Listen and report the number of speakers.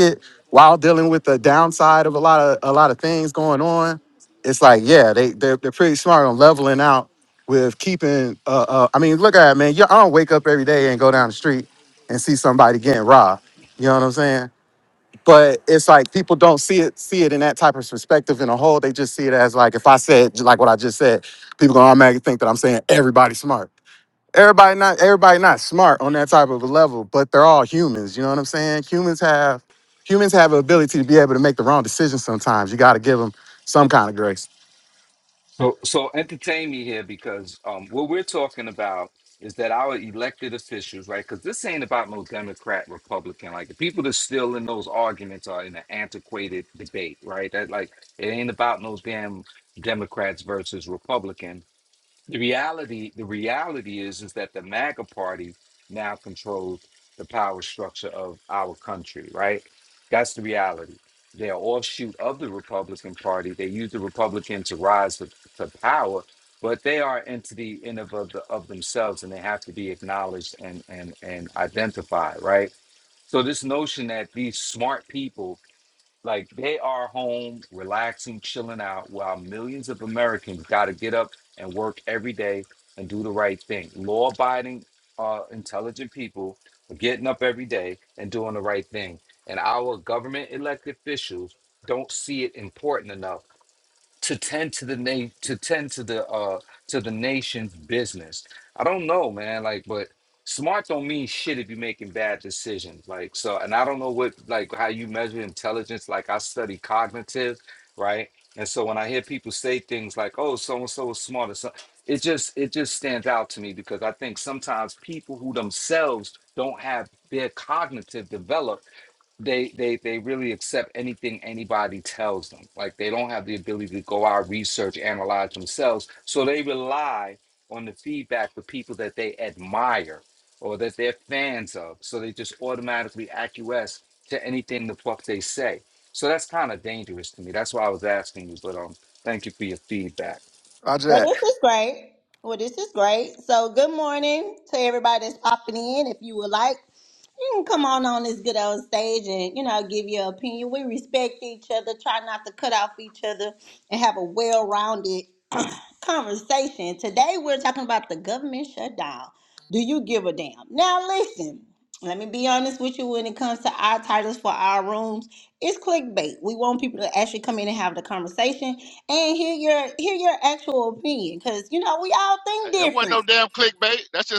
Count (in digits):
4